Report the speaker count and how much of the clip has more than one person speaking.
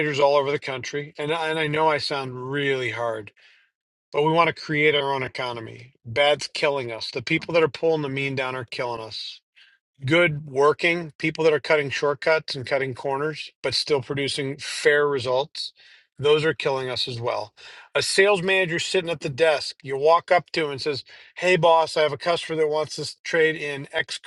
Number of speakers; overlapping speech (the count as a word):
one, no overlap